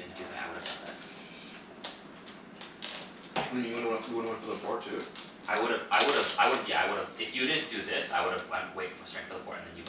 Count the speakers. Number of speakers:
2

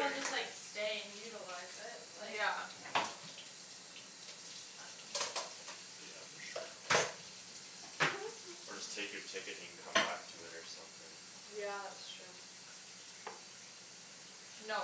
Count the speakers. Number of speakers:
3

